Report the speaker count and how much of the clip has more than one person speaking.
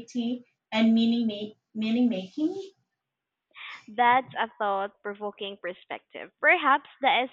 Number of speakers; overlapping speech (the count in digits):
2, no overlap